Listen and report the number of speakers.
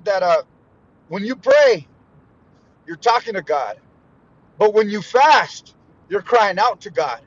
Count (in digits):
1